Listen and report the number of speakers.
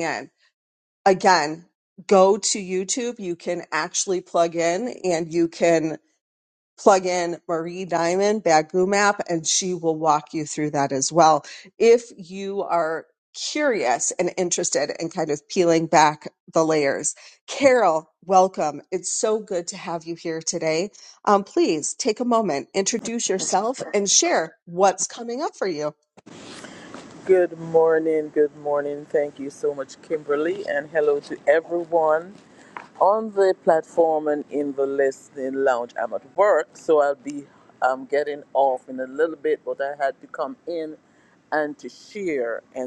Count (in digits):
2